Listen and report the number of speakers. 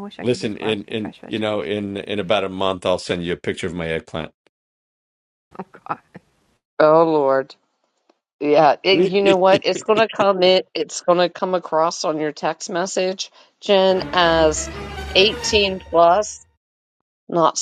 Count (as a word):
three